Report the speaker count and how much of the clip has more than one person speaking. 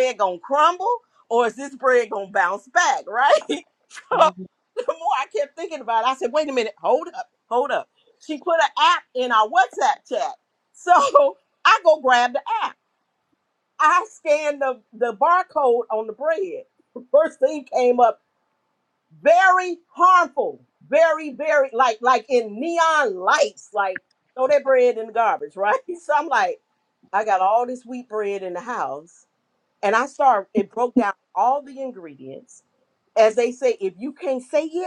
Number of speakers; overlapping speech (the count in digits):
1, no overlap